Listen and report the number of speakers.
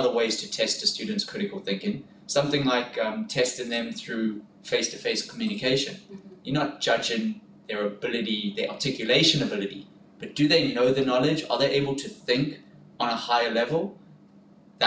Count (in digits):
1